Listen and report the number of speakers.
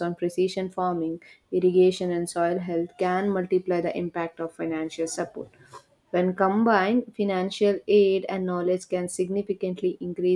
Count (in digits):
1